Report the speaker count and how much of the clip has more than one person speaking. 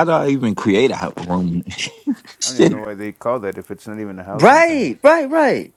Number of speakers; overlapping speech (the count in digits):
3, about 15%